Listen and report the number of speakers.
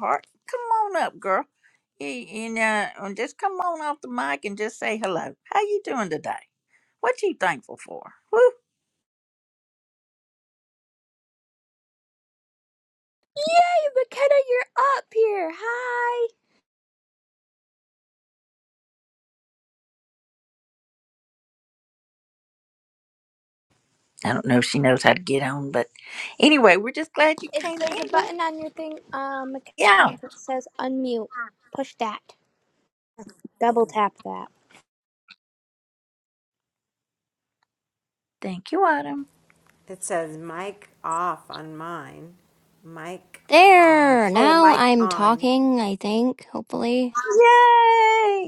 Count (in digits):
4